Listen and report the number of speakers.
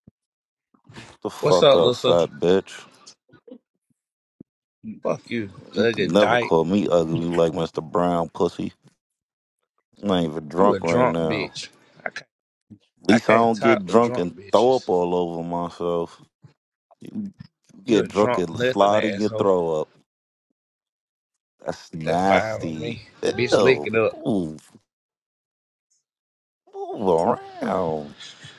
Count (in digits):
2